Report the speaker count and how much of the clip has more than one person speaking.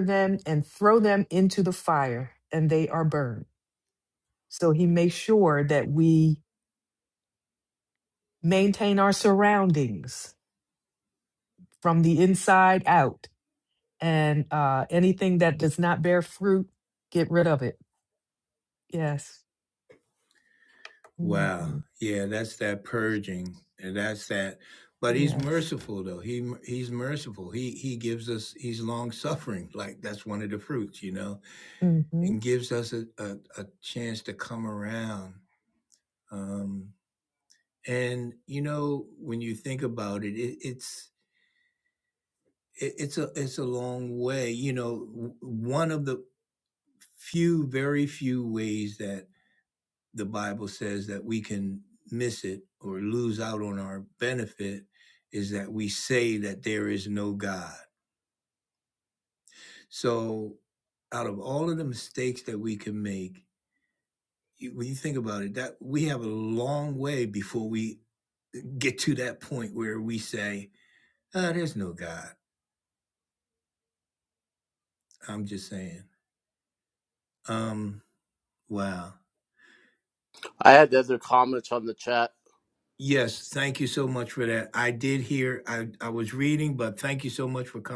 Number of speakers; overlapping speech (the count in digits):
3, about 1%